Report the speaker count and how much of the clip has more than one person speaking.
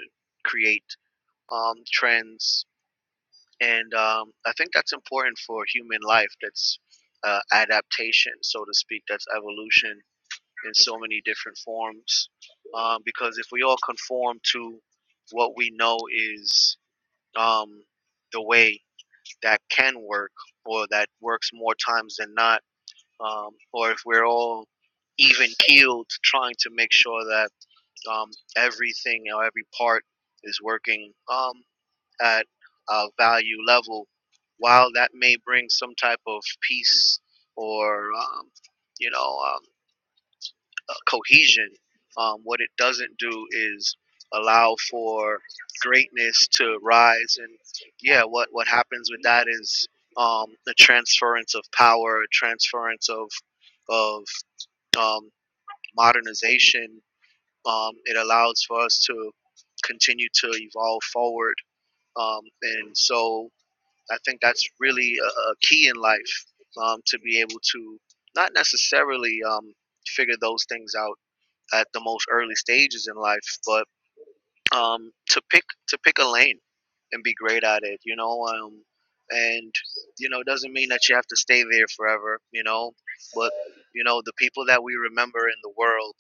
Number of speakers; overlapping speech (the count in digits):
1, no overlap